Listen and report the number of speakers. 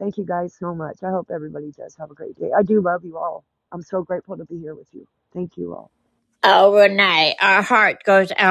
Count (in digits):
2